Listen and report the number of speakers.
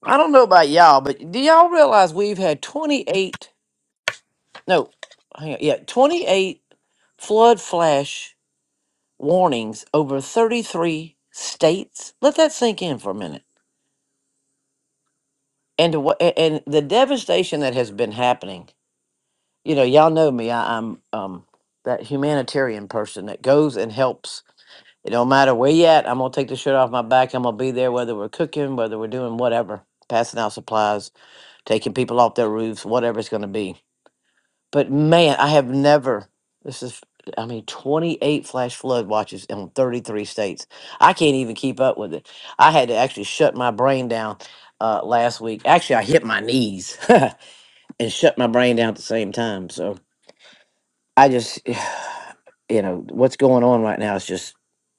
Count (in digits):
1